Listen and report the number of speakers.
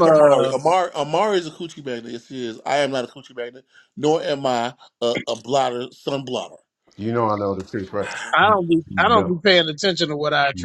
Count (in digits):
3